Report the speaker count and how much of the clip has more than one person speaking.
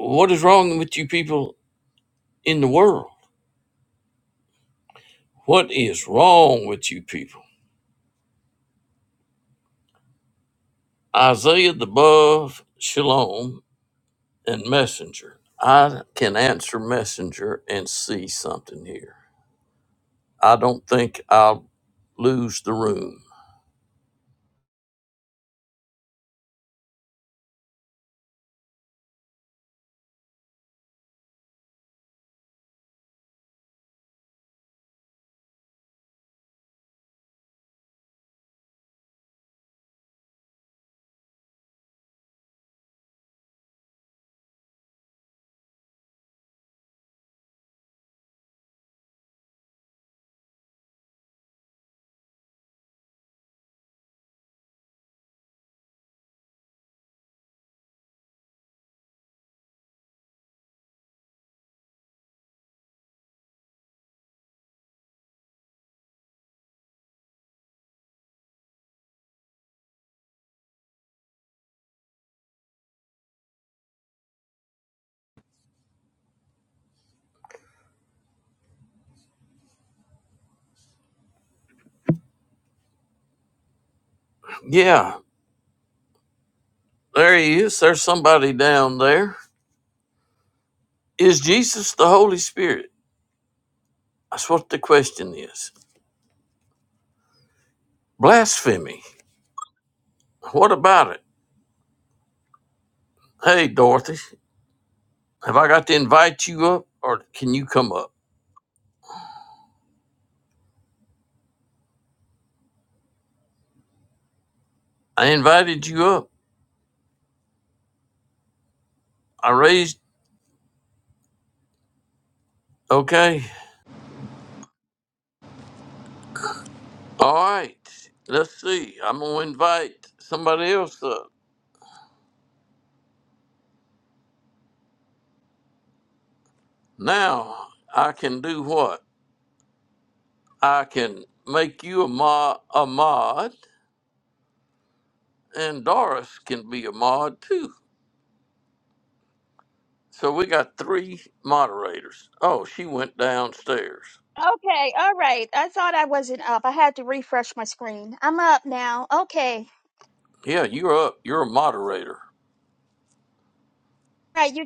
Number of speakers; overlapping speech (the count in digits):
2, no overlap